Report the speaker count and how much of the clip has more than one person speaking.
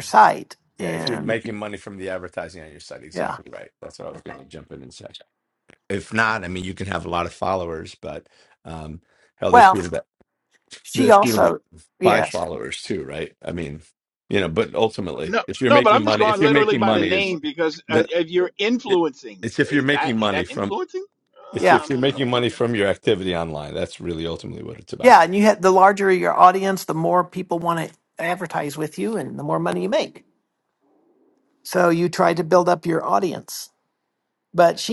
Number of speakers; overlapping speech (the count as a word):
three, about 18%